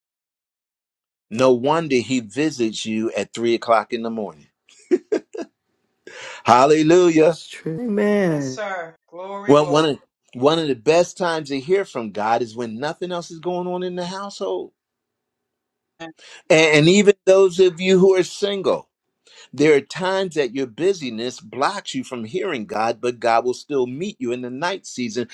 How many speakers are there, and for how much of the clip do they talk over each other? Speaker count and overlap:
3, about 3%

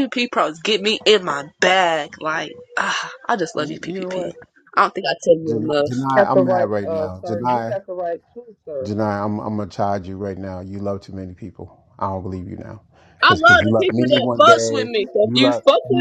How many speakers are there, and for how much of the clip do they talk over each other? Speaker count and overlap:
3, about 33%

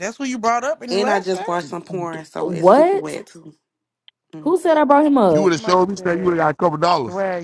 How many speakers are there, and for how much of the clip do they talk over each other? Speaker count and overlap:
4, about 32%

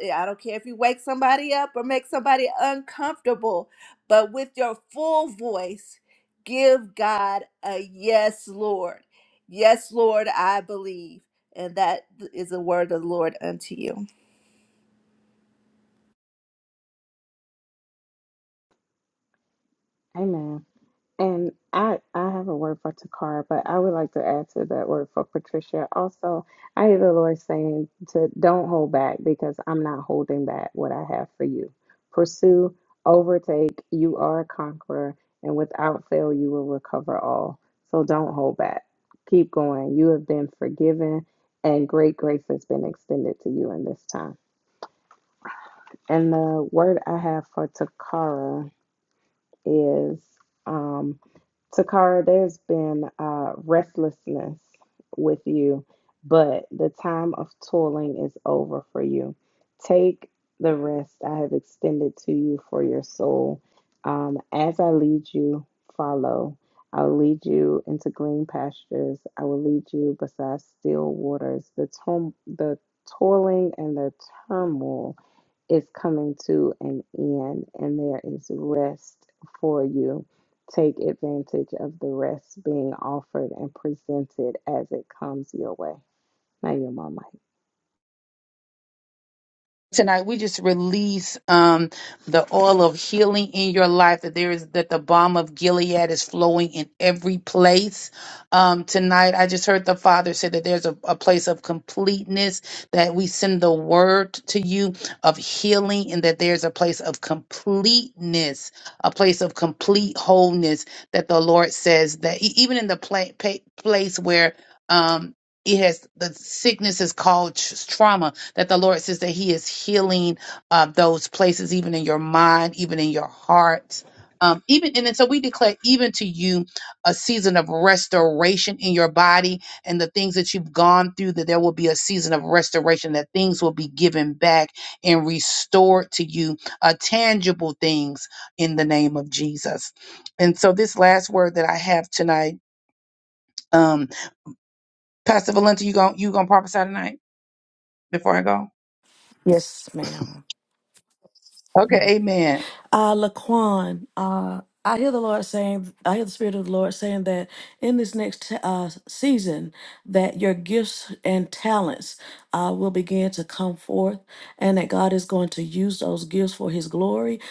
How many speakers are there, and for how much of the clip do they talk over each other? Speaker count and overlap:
4, no overlap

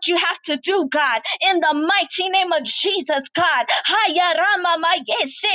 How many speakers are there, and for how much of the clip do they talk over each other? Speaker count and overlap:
1, no overlap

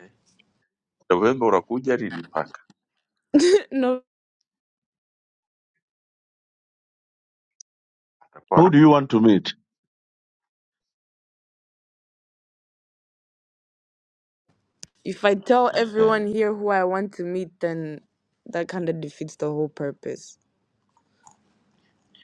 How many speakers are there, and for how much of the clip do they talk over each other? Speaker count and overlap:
3, about 2%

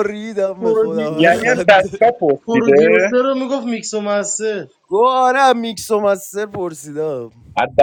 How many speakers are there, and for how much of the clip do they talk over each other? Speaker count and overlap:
3, about 22%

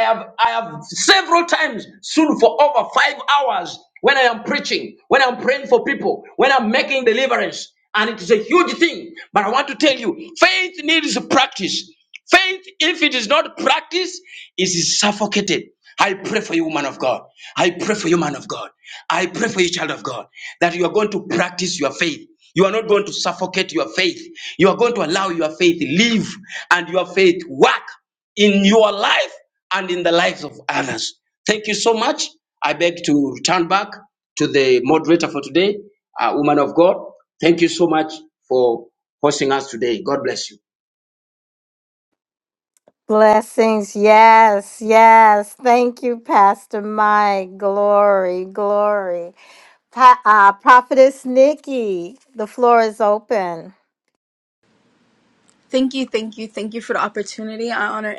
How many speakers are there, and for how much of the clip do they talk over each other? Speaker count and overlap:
3, no overlap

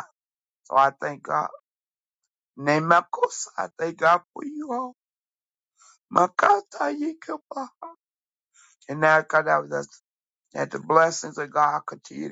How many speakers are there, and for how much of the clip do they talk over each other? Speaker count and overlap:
1, no overlap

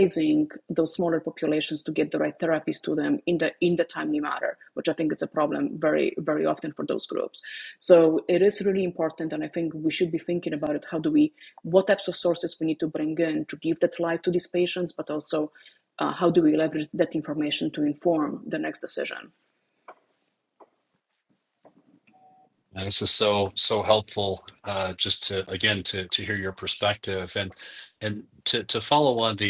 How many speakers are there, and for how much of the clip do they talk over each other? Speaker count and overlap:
2, no overlap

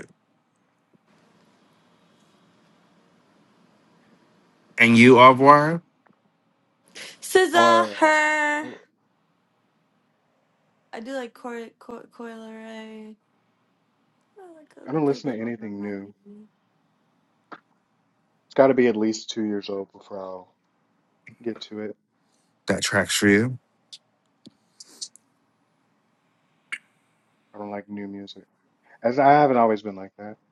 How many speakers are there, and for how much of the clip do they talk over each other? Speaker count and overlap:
3, about 6%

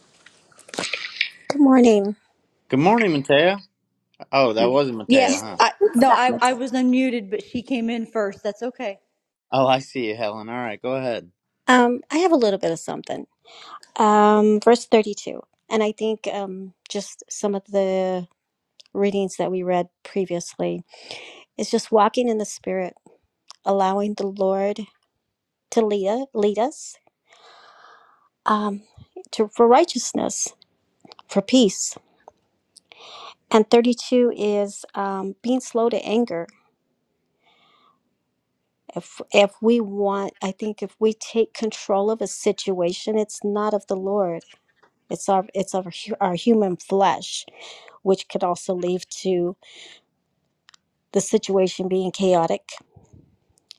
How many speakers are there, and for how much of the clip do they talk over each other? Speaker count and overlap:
3, about 2%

